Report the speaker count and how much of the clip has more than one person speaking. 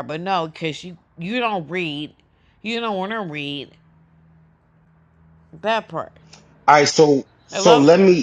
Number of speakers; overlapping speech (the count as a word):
two, about 3%